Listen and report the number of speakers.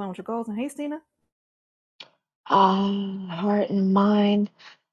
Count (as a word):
two